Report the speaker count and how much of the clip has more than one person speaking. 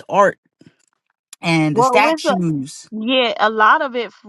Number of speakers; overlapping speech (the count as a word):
two, about 15%